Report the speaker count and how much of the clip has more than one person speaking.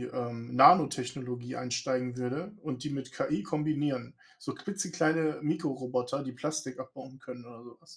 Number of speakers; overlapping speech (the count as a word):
one, no overlap